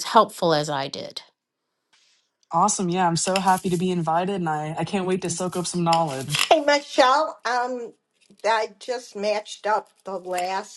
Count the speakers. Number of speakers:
3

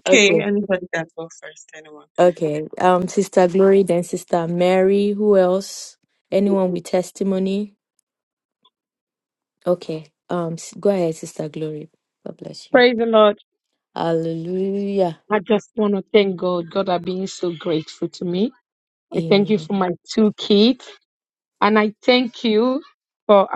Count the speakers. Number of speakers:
3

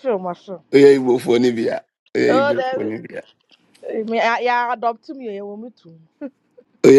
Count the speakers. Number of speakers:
2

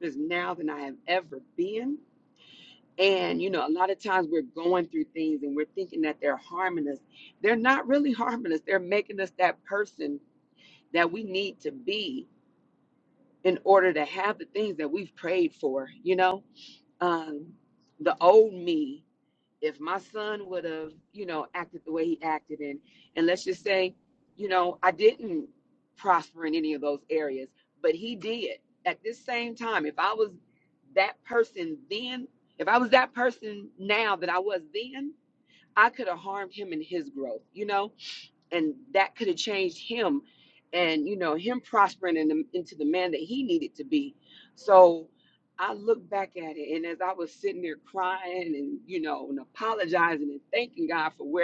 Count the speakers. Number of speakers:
1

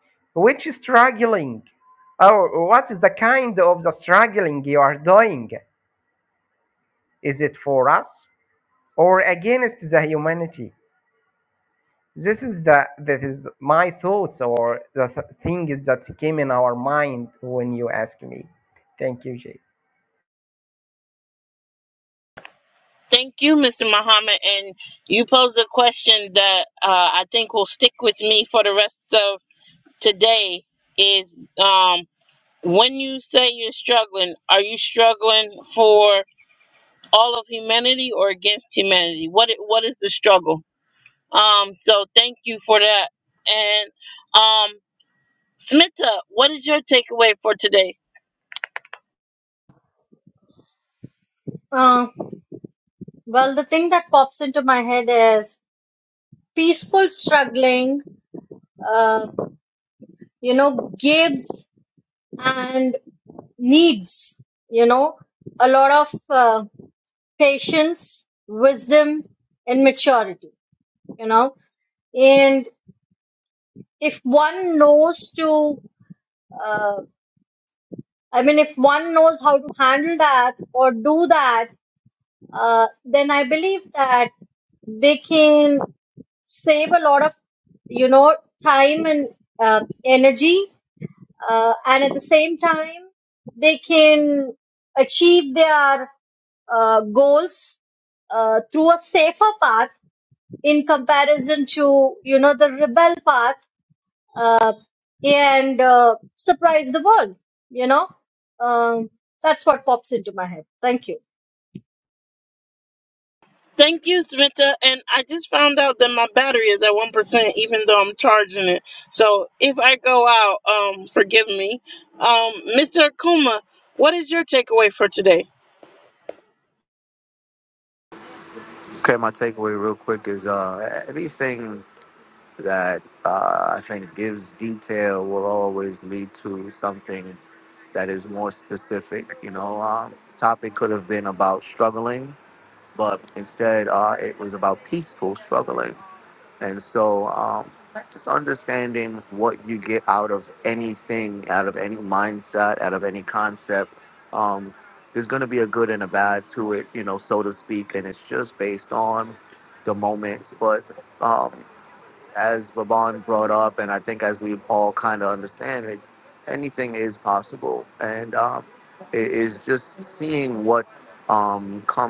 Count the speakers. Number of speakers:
4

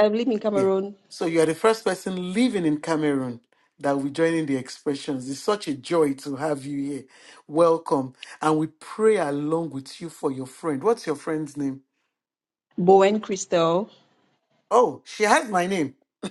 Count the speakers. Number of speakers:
2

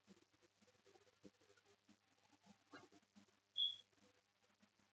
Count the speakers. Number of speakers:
0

